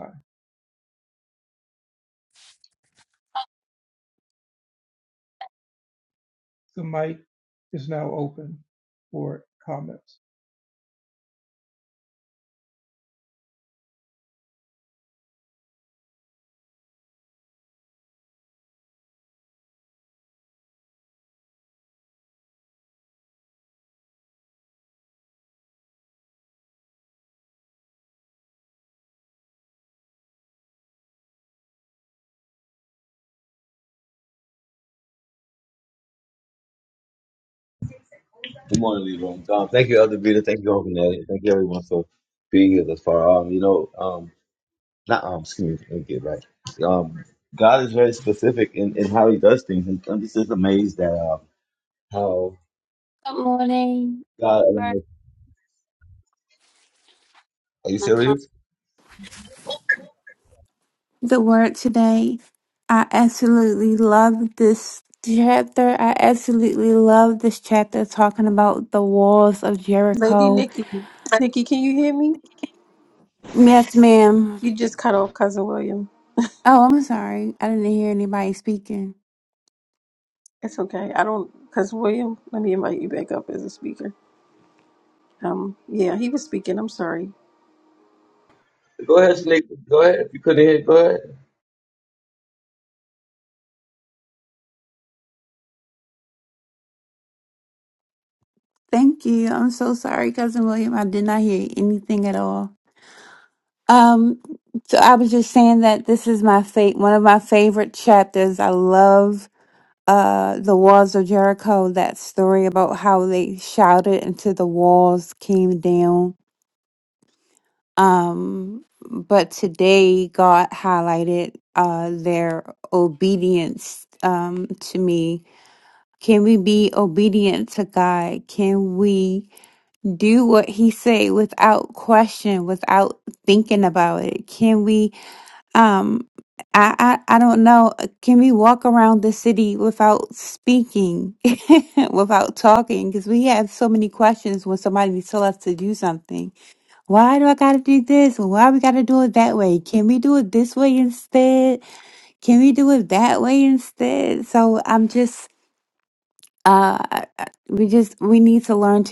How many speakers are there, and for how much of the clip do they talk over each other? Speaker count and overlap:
4, about 1%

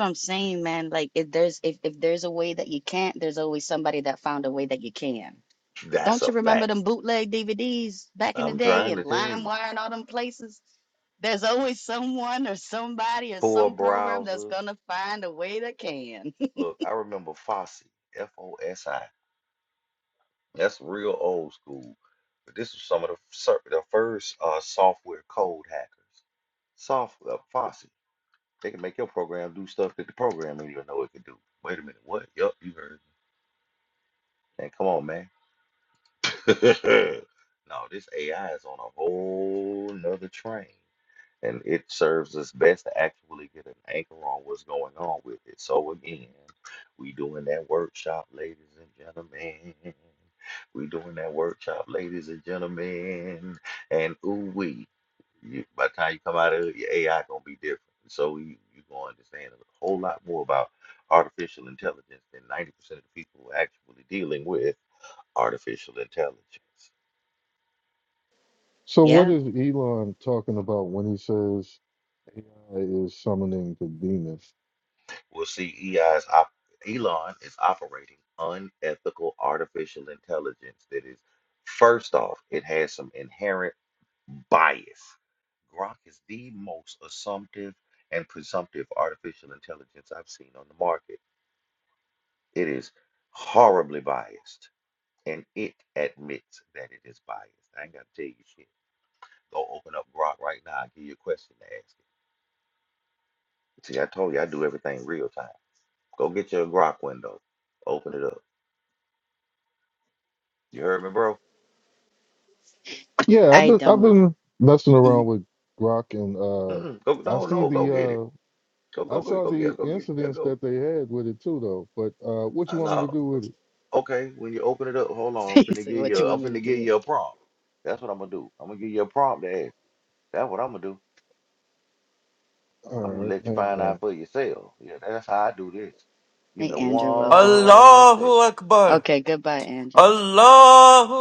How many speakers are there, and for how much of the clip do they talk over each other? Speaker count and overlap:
4, about 8%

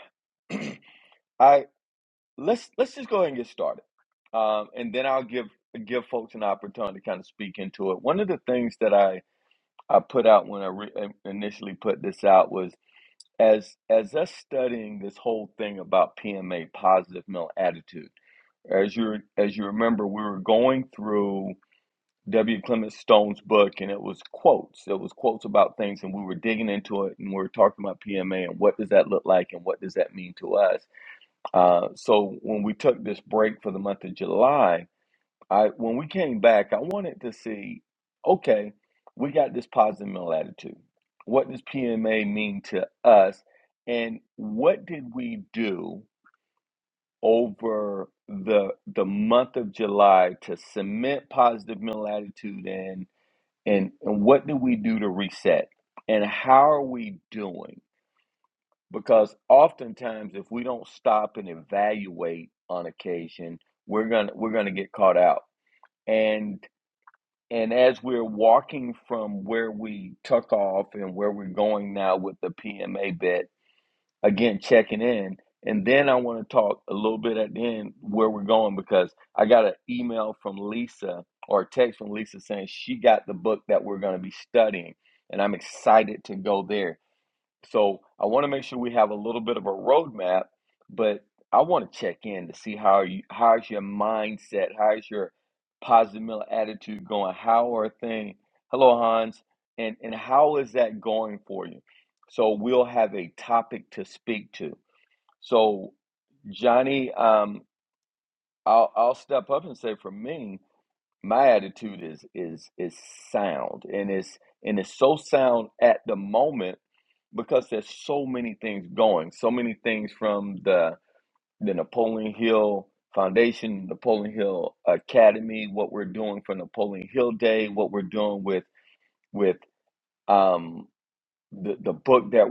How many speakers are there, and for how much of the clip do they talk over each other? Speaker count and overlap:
1, no overlap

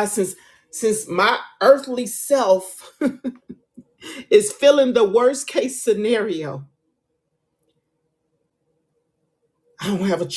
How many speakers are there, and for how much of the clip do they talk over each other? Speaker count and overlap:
1, no overlap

